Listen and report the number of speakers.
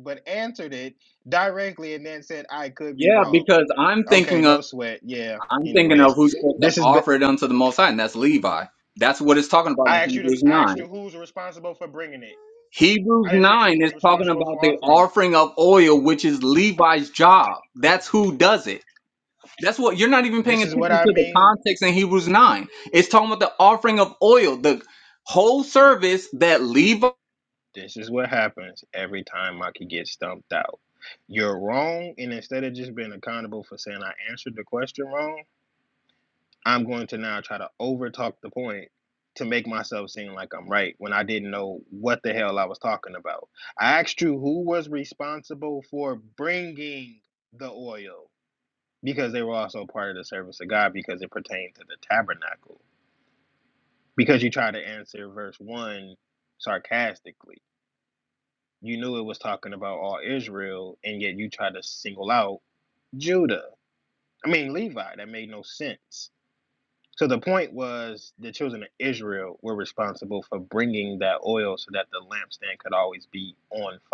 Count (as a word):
two